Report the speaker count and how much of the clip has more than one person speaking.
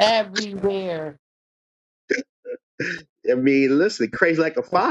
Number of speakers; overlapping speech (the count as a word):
two, no overlap